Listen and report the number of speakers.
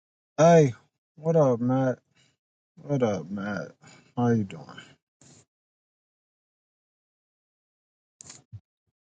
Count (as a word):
one